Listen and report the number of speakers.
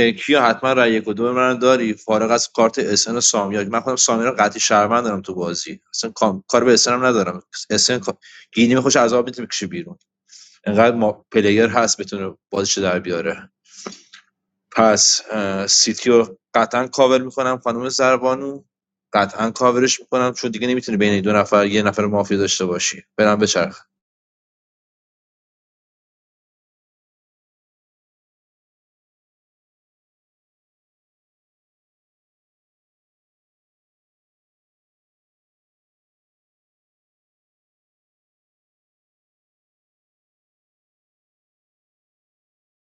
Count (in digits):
1